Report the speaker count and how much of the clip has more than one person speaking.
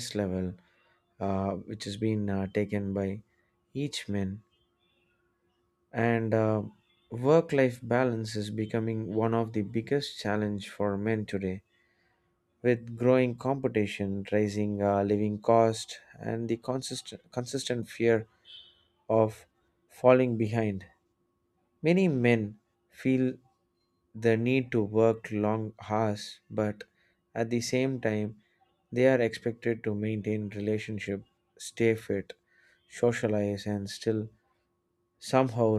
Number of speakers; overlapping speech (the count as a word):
one, no overlap